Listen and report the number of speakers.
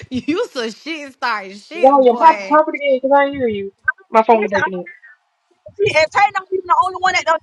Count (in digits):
3